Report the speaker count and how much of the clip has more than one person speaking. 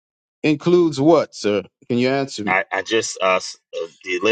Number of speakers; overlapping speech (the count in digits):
2, about 2%